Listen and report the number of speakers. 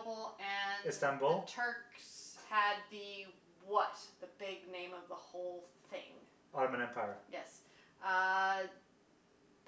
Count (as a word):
two